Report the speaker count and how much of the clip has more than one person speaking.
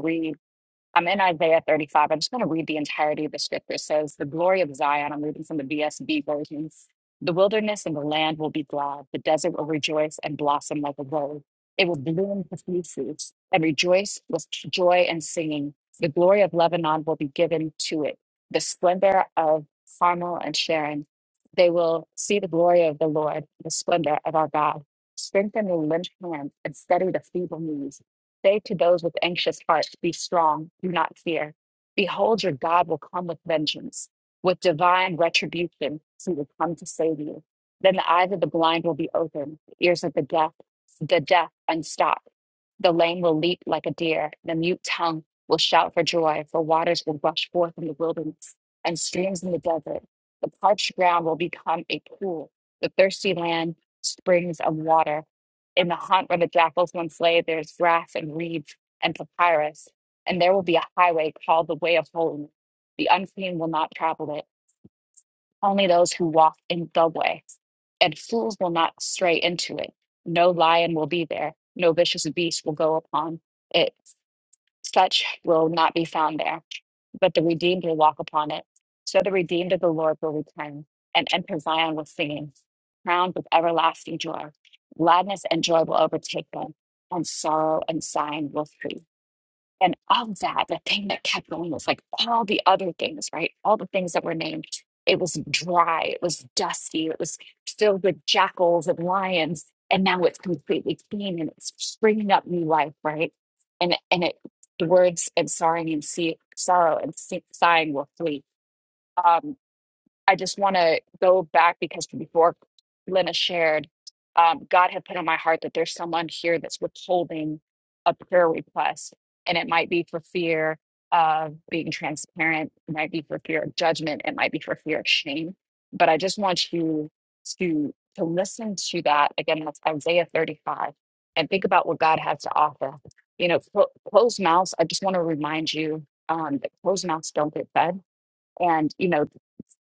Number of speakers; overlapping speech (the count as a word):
one, no overlap